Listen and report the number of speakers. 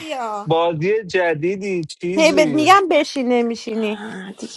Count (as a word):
three